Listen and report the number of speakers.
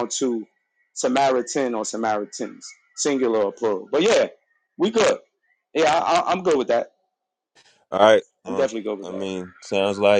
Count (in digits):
2